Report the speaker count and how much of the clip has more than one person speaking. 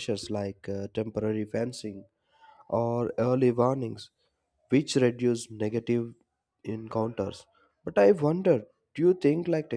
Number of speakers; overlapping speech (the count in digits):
1, no overlap